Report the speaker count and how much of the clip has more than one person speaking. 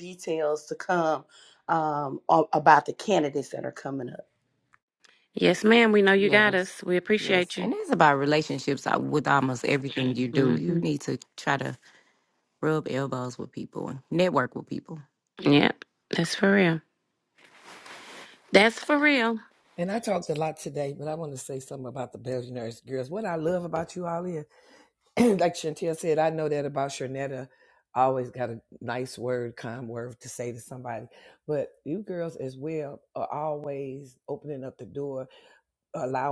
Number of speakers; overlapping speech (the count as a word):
four, about 4%